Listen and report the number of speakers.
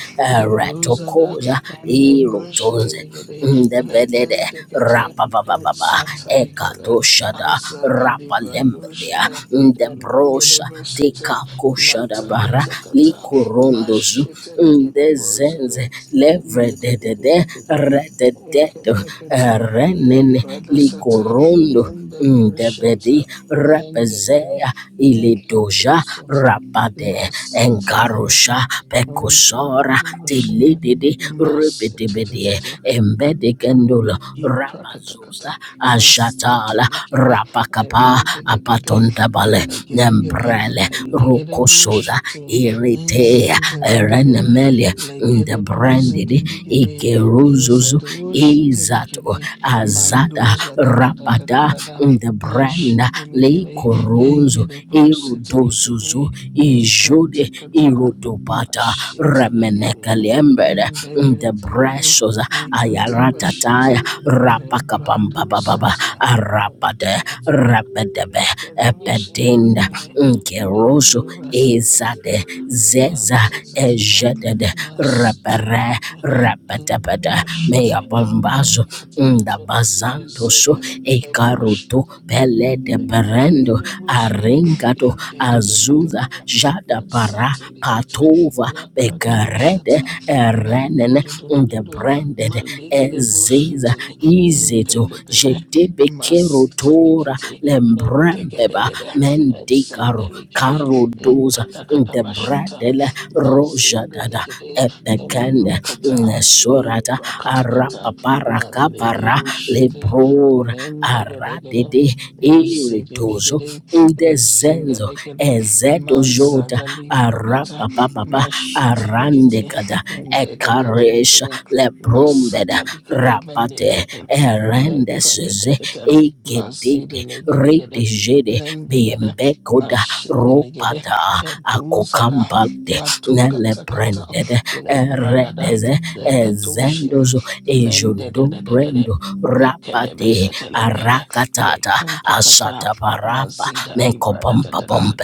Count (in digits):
2